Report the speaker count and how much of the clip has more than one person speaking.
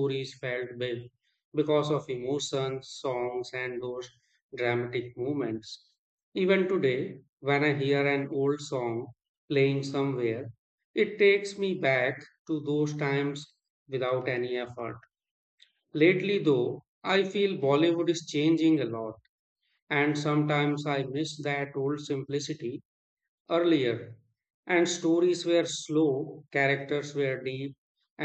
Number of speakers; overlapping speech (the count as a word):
one, no overlap